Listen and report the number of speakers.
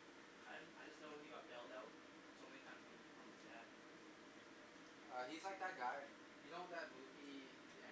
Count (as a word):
two